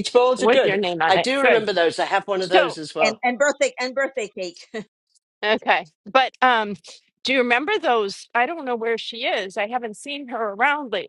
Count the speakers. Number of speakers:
three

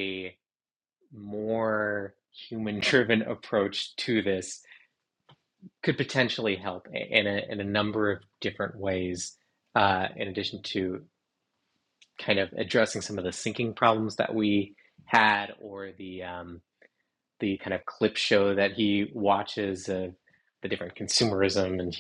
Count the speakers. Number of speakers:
one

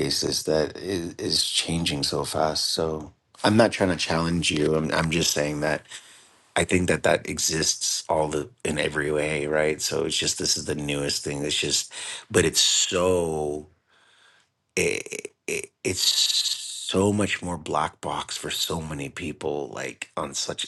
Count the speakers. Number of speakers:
one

